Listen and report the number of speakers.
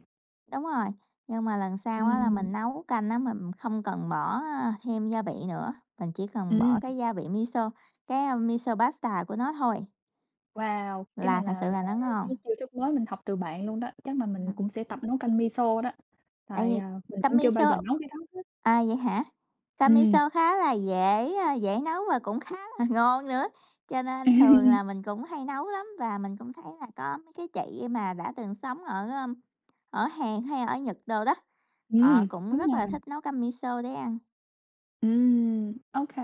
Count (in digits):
2